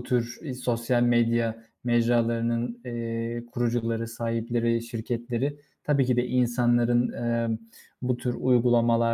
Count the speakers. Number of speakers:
1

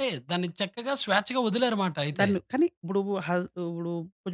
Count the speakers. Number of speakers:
2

